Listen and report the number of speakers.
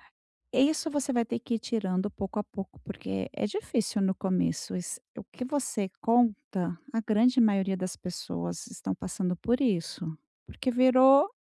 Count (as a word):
one